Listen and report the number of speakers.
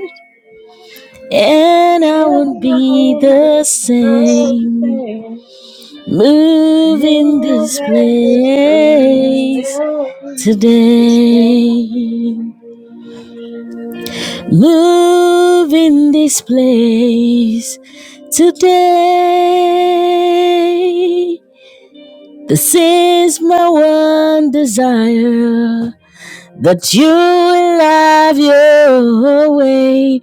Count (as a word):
two